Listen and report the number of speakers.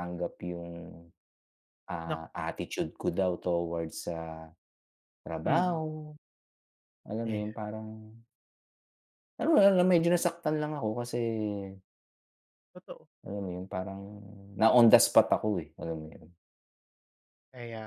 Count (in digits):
2